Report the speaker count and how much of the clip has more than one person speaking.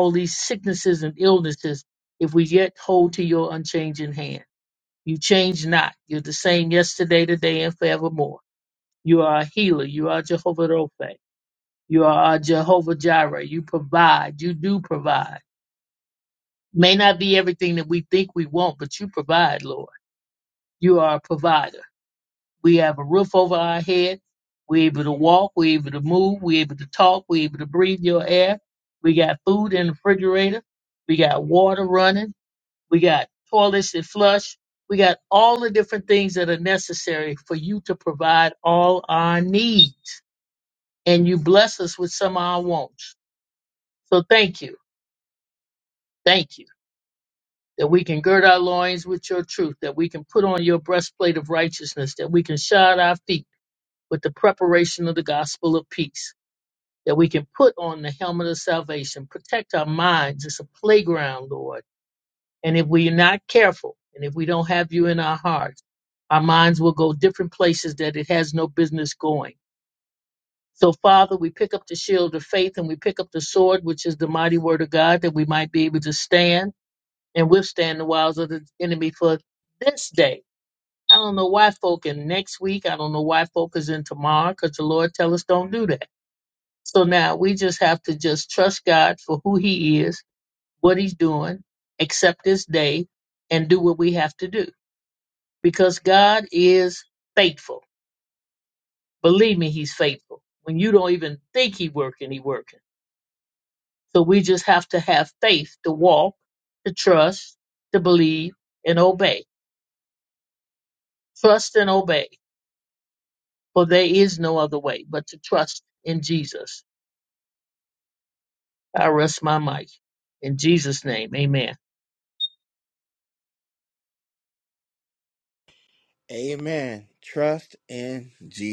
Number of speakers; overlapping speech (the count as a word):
two, no overlap